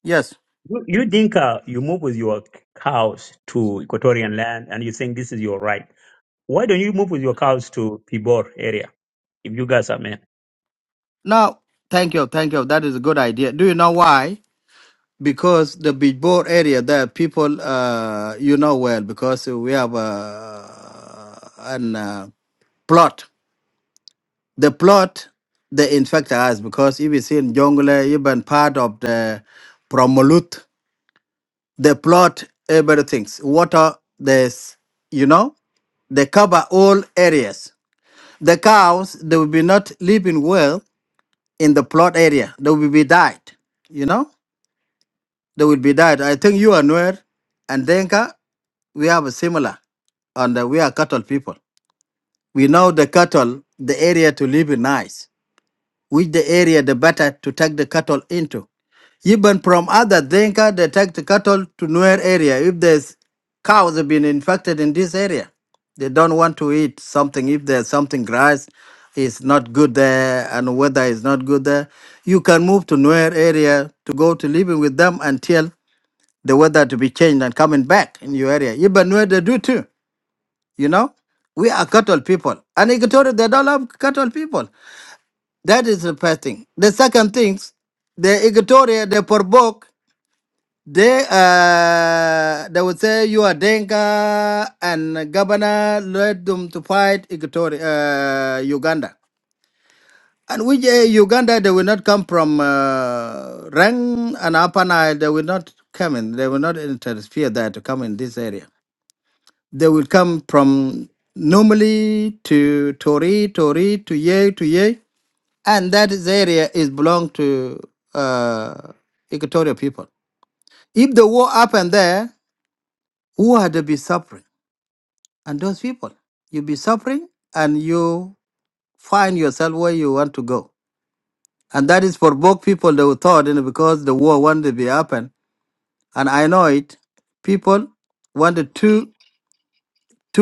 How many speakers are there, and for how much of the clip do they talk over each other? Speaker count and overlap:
2, no overlap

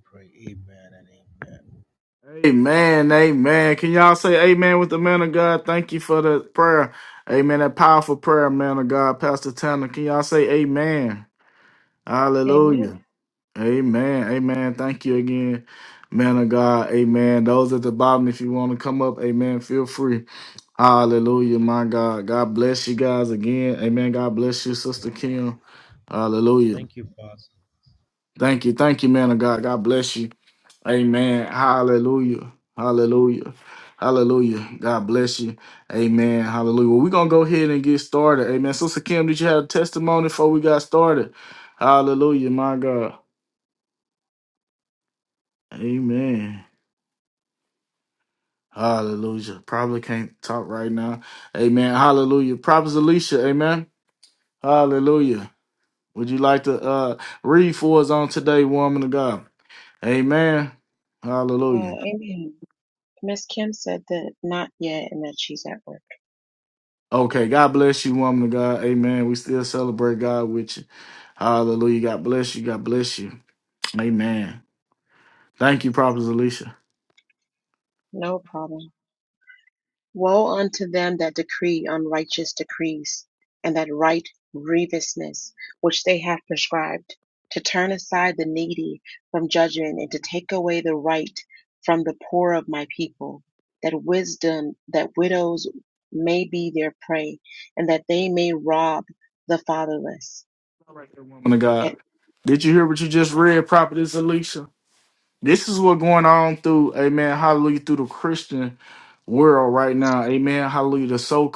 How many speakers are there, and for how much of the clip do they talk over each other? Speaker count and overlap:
3, about 1%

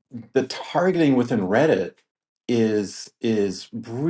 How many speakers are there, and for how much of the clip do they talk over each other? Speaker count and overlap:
1, no overlap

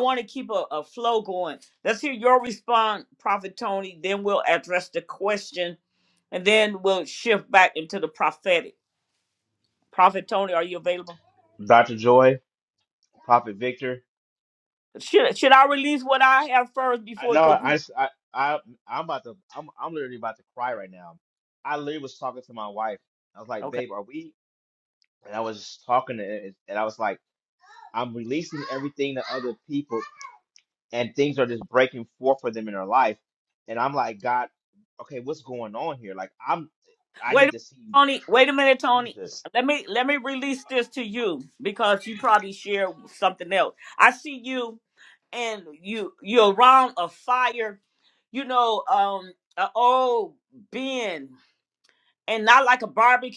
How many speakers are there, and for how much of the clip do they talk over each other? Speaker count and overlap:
2, about 2%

